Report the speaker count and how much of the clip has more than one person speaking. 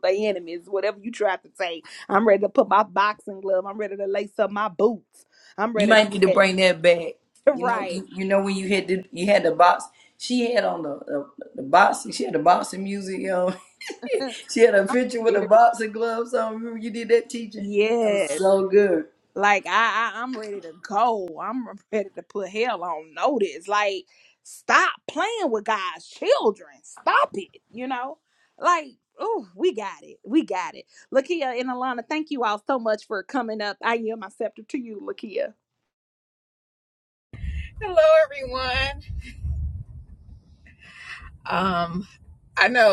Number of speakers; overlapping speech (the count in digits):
3, about 4%